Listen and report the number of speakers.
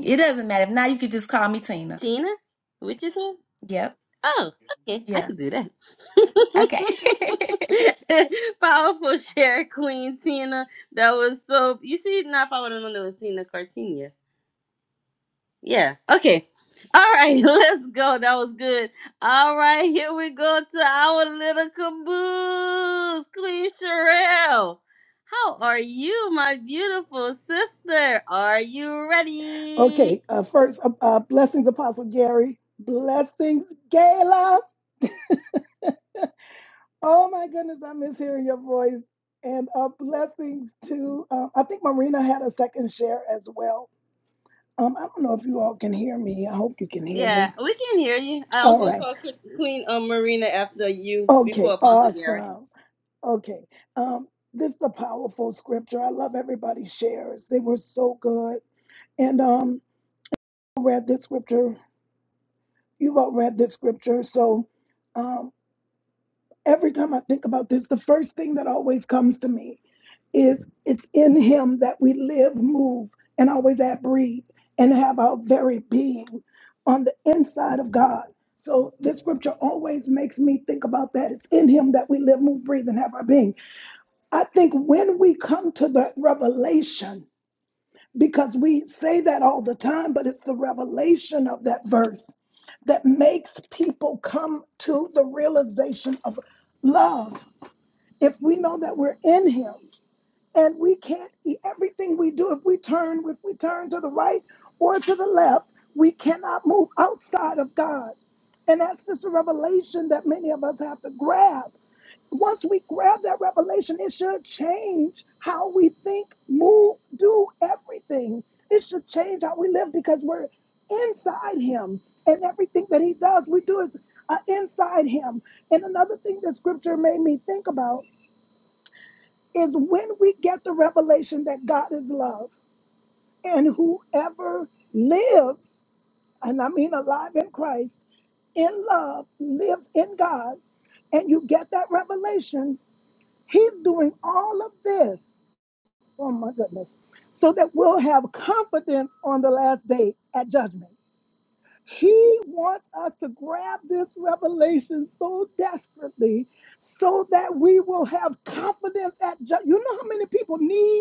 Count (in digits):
3